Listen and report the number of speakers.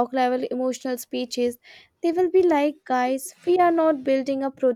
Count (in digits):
1